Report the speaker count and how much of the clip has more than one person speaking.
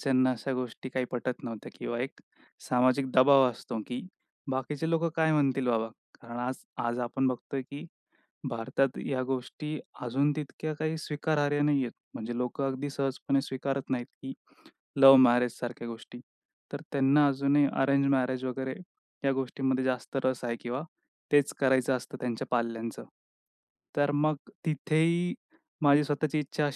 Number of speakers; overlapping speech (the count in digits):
1, no overlap